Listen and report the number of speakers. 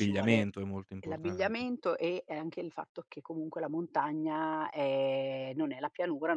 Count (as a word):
two